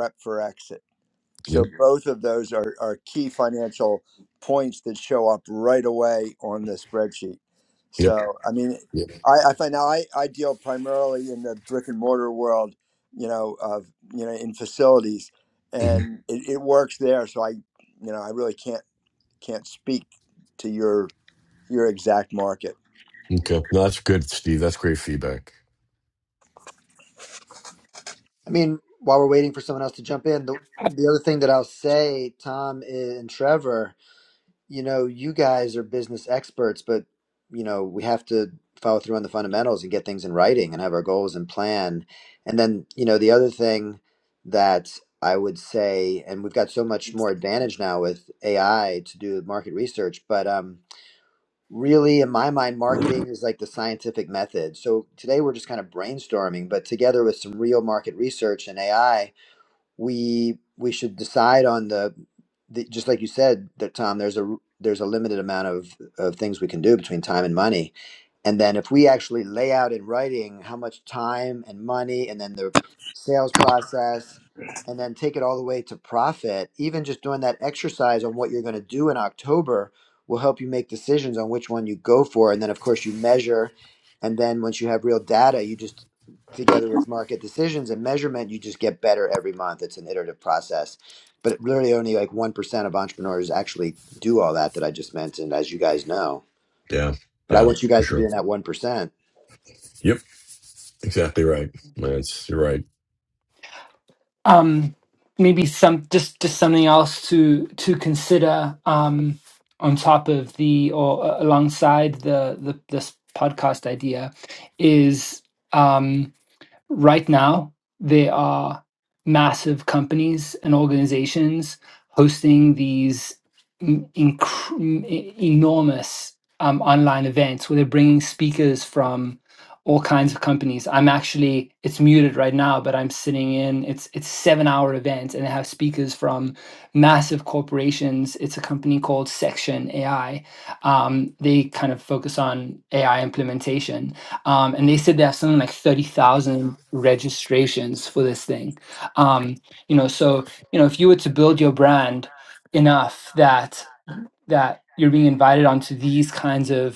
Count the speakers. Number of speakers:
four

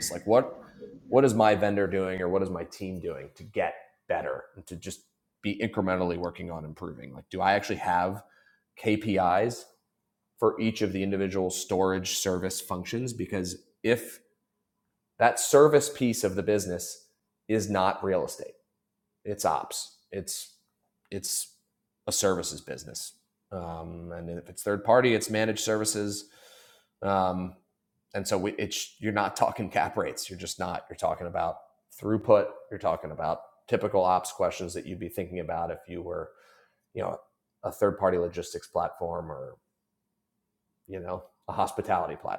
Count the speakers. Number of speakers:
one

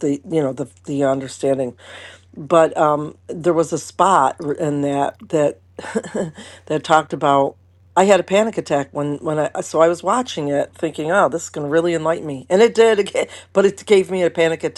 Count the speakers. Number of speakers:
one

